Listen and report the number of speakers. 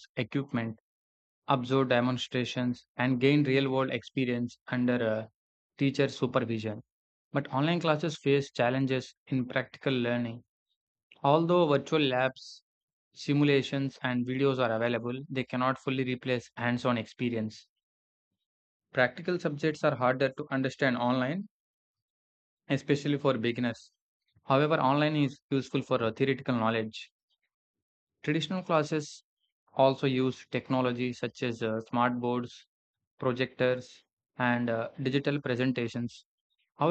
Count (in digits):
1